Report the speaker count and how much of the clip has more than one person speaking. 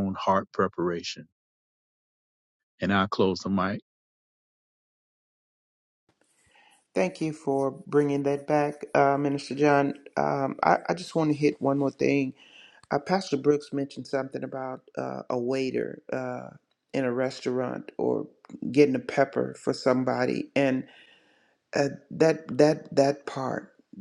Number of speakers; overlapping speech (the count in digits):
2, no overlap